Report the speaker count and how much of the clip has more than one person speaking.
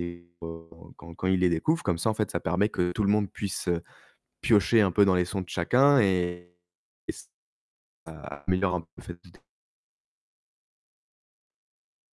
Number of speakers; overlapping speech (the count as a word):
one, no overlap